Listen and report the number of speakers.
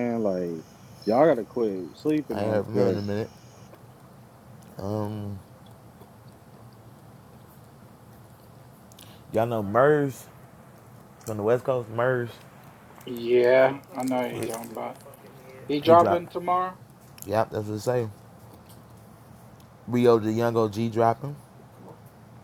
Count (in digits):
3